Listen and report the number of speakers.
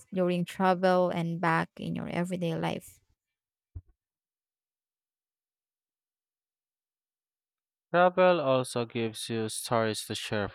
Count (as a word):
two